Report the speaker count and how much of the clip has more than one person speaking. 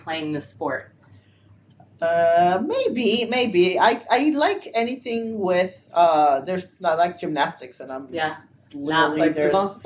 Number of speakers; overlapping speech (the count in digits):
2, about 10%